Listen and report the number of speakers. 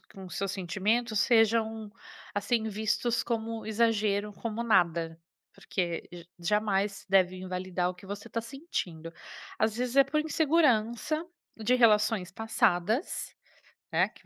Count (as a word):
one